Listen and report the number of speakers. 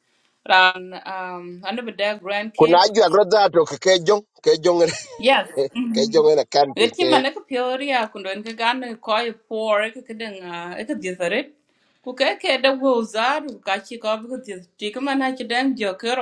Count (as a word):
two